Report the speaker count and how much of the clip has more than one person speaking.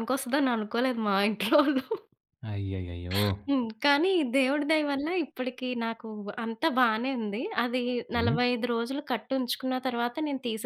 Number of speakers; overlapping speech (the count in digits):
2, about 2%